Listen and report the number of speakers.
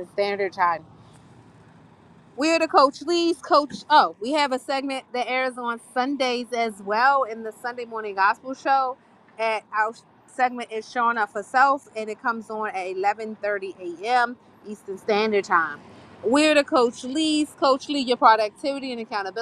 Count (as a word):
one